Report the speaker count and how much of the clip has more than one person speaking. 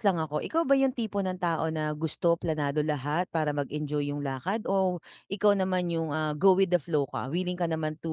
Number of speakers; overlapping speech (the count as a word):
one, no overlap